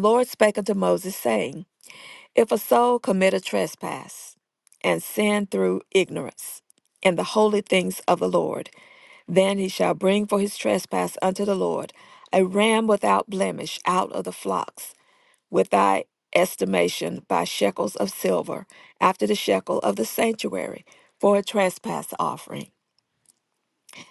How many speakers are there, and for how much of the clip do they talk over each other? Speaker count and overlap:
1, no overlap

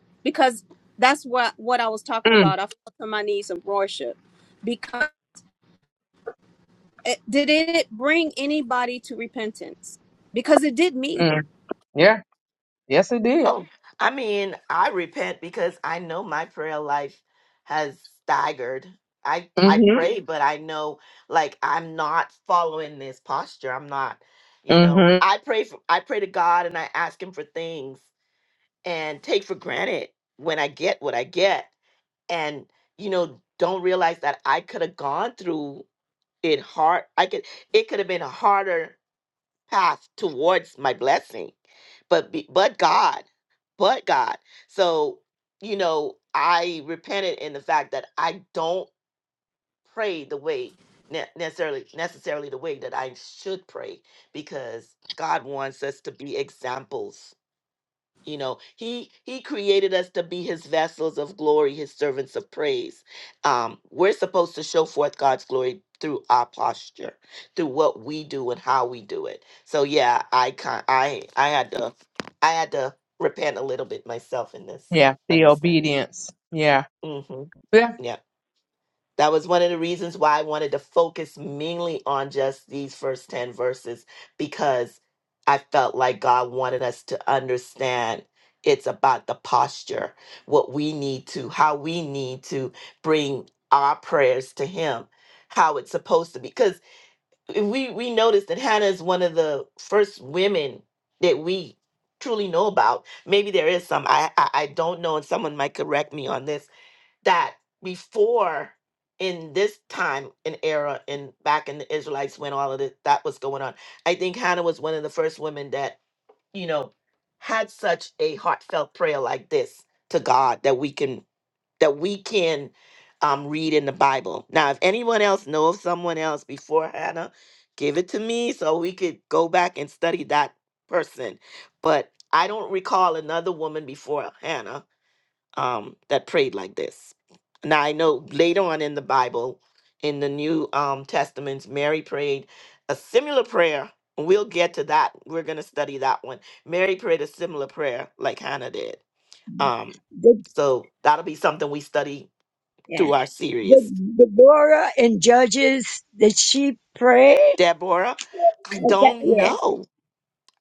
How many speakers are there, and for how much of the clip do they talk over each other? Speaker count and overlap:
4, about 2%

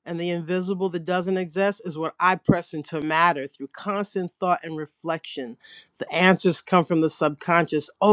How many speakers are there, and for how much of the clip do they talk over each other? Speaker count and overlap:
1, no overlap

